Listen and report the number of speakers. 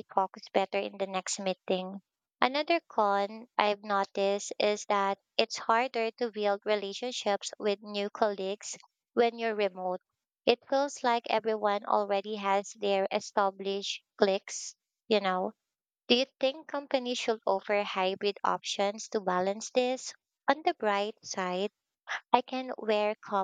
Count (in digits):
1